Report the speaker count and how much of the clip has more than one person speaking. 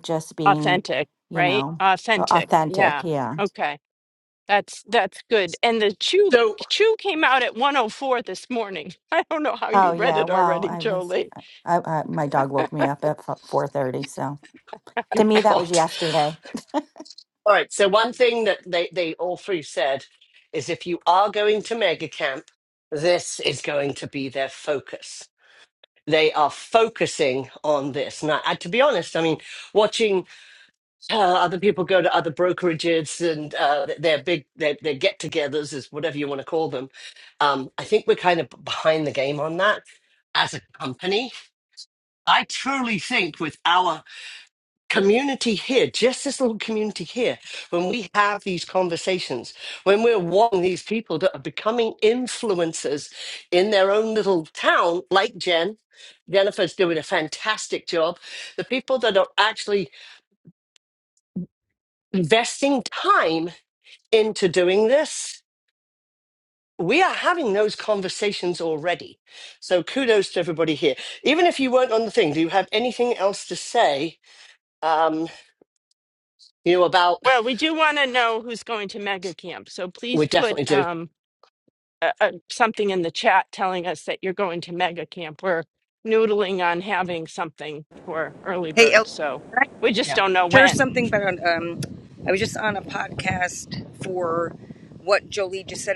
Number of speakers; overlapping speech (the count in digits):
4, about 6%